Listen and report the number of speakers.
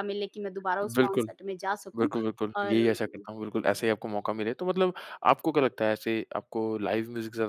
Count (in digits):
2